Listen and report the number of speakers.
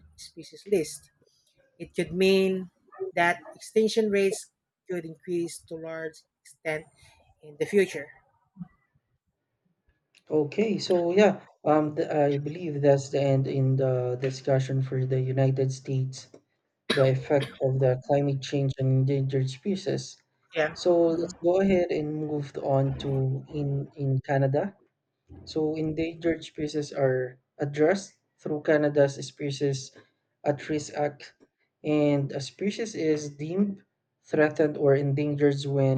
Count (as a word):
two